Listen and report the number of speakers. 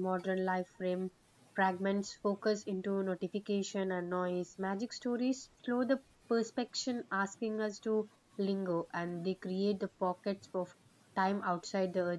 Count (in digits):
1